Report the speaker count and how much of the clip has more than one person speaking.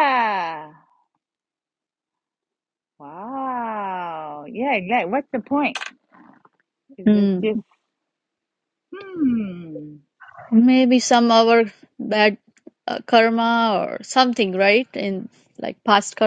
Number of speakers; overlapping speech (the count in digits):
2, about 2%